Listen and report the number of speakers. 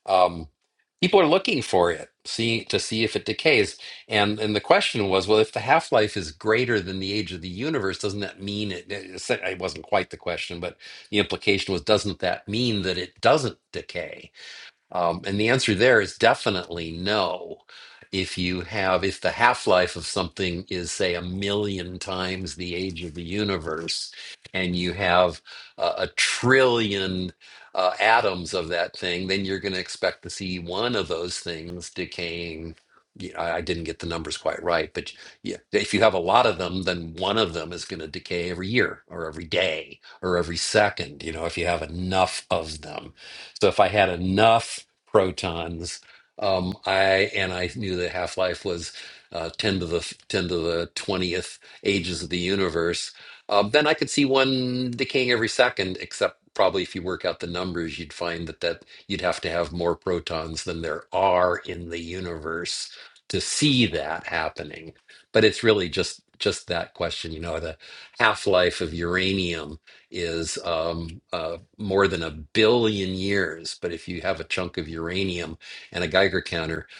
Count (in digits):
1